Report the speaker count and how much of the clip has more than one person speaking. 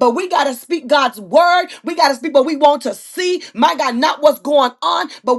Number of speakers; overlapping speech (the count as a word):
one, no overlap